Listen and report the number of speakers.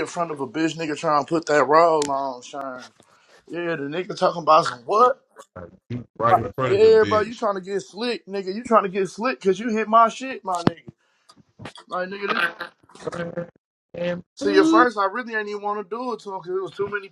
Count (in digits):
2